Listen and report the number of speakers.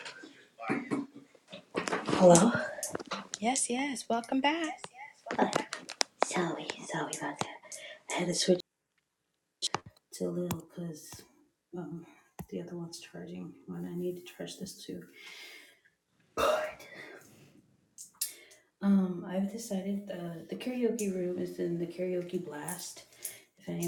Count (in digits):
2